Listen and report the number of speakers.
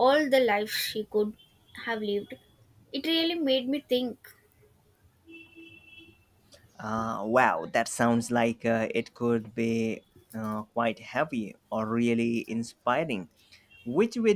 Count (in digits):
2